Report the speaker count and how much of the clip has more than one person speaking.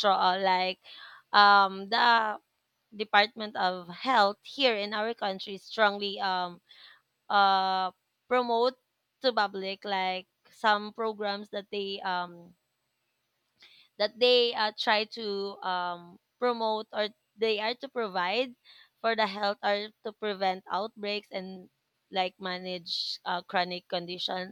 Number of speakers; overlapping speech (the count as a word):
one, no overlap